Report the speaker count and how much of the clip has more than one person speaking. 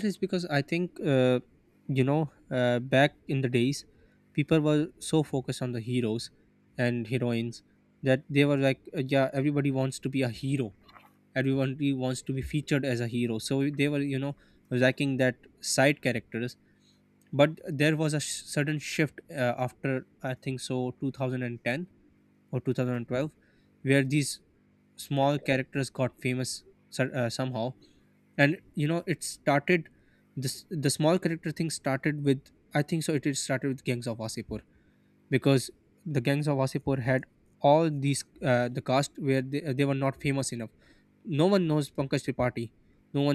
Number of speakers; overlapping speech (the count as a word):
one, no overlap